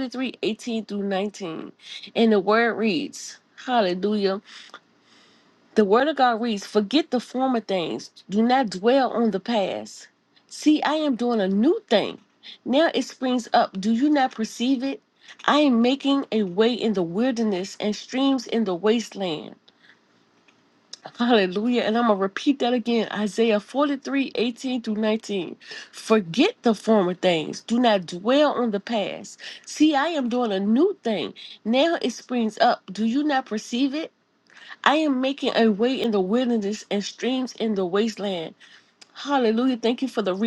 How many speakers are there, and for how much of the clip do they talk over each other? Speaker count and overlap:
one, no overlap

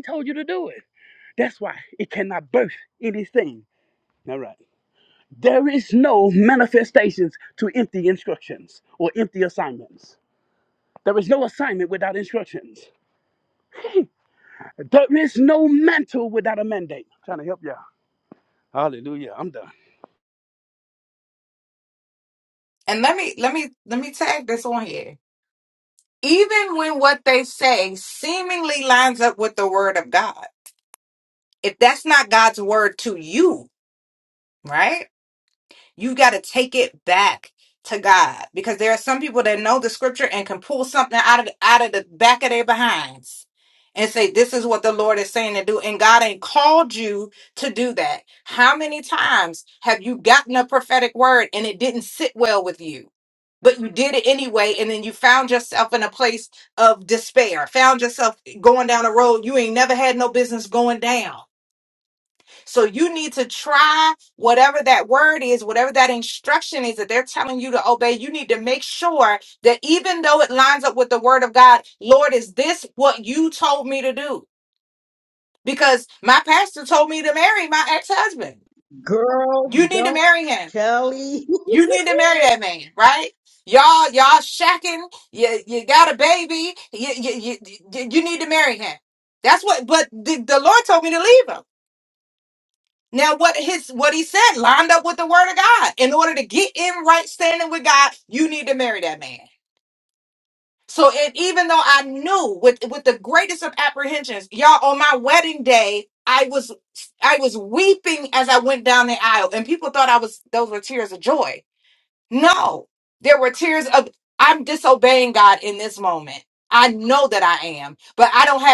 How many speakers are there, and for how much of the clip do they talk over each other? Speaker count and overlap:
three, under 1%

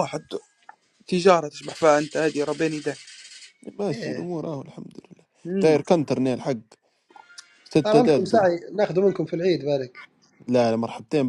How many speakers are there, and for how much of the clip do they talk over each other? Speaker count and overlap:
three, about 10%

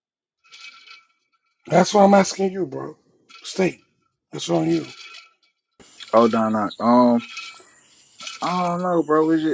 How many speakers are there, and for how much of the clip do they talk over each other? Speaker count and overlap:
two, no overlap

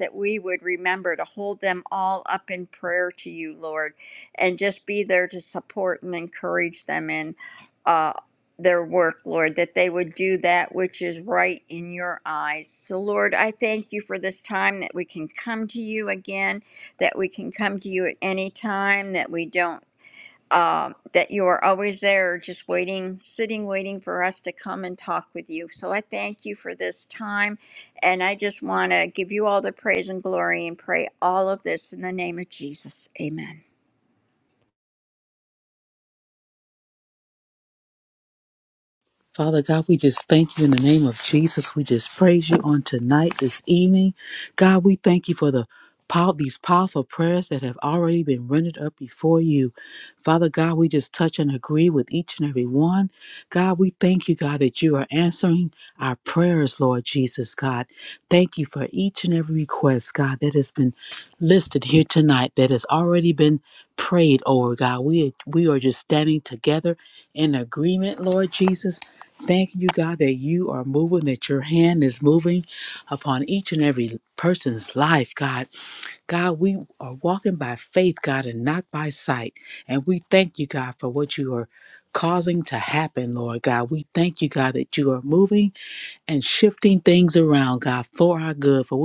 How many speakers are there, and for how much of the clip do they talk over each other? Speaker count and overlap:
two, no overlap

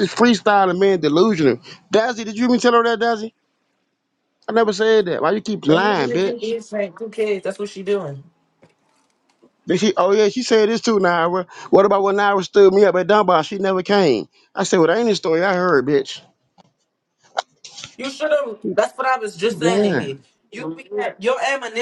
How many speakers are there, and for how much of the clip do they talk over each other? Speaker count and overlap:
two, about 7%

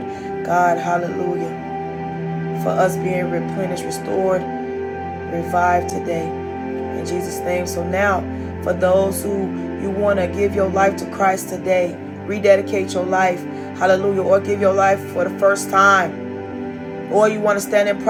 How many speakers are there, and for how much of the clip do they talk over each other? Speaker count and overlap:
one, no overlap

